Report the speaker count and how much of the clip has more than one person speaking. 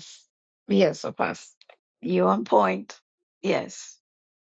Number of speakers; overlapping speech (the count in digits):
1, no overlap